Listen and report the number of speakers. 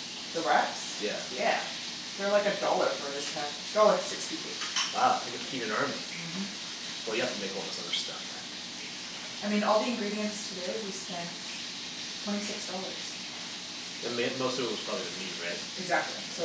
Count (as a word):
two